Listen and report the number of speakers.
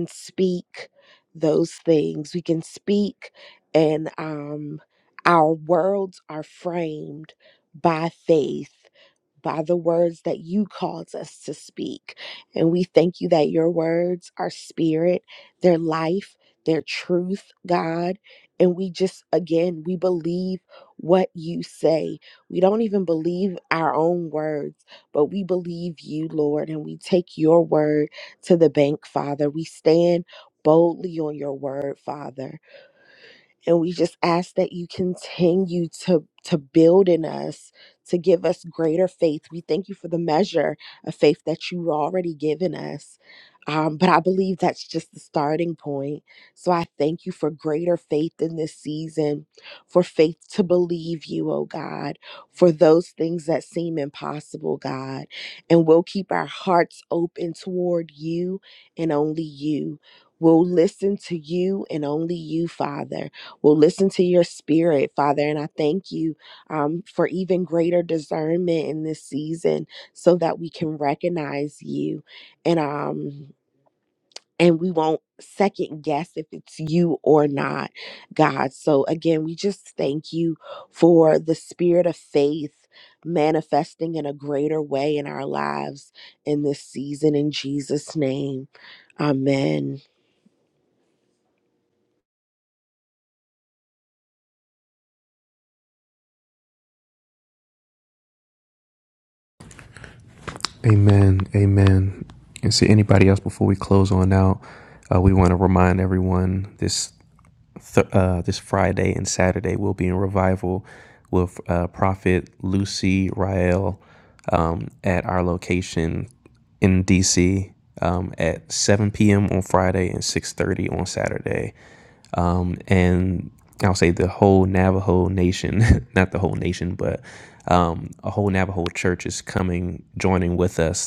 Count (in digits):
2